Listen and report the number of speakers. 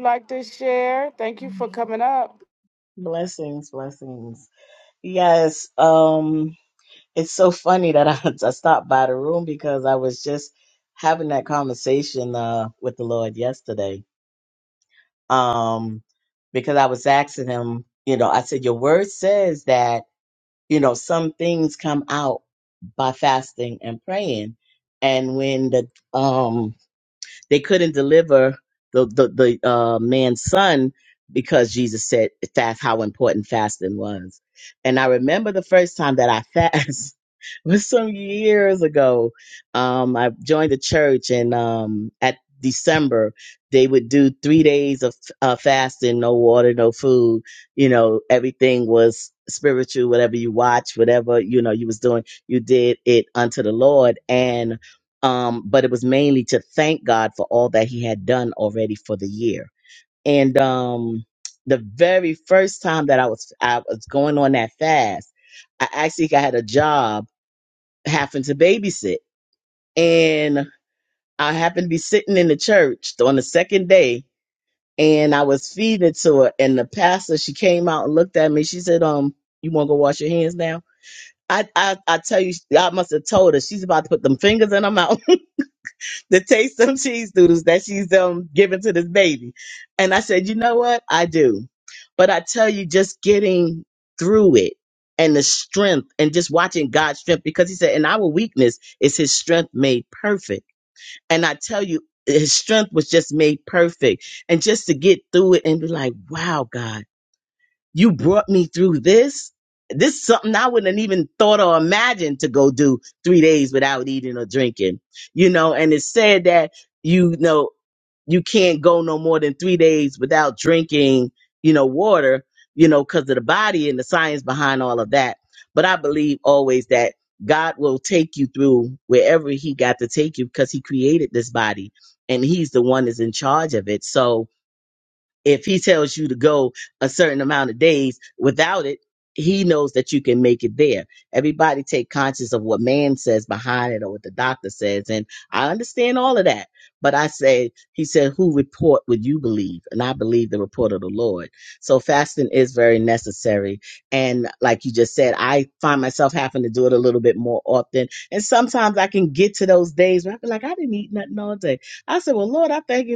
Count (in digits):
2